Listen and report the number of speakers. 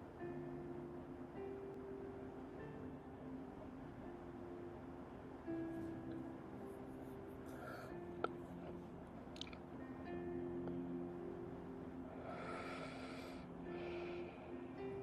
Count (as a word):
zero